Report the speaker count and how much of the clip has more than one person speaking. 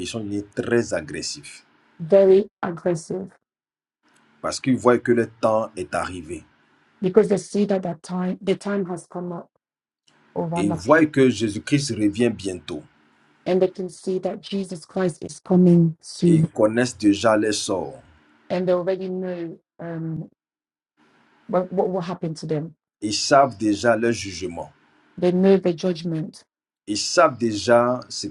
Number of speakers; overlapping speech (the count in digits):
2, about 2%